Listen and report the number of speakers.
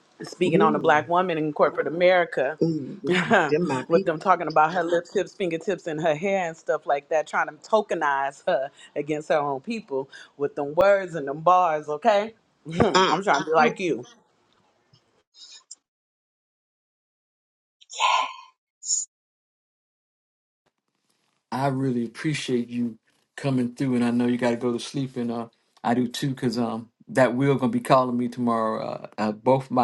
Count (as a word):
three